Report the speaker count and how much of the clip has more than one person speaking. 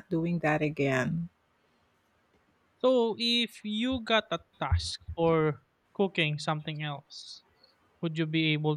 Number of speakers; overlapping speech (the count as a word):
two, no overlap